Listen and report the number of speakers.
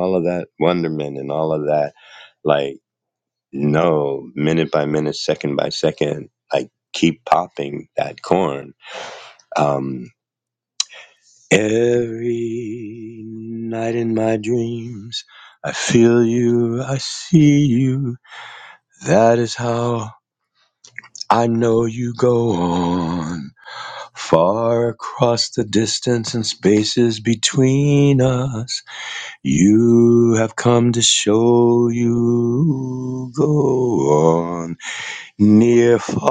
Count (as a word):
one